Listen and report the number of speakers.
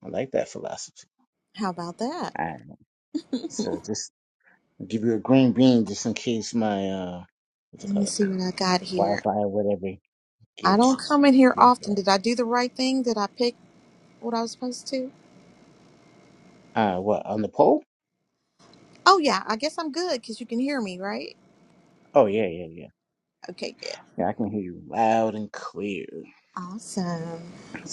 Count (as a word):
two